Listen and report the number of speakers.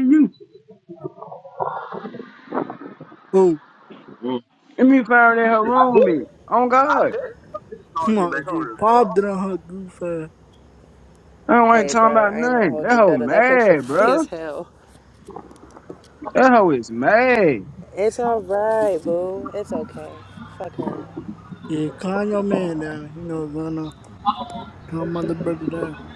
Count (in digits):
4